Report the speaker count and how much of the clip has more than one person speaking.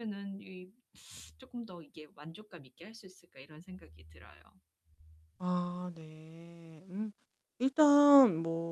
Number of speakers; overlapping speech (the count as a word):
two, no overlap